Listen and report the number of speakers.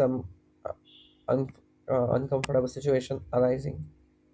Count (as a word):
one